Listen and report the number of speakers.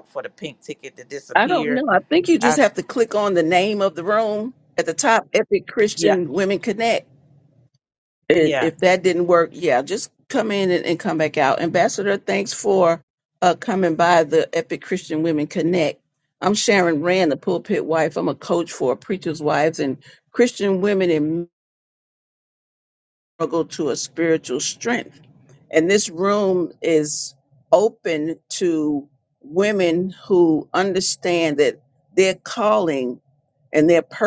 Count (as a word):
two